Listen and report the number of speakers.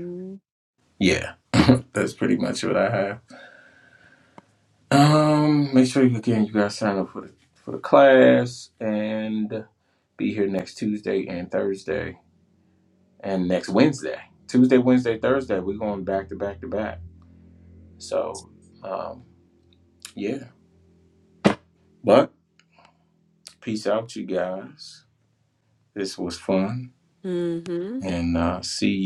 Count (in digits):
2